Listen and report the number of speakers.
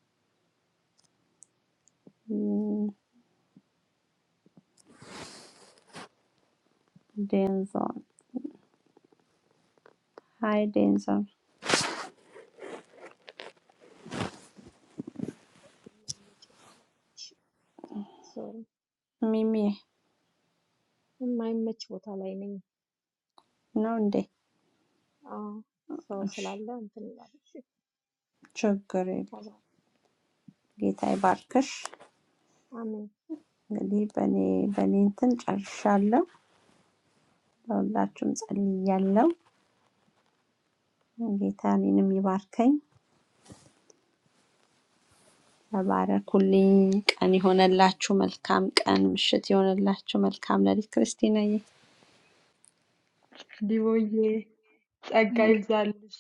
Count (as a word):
three